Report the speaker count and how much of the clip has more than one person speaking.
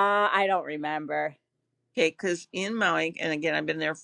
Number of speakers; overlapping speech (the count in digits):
2, no overlap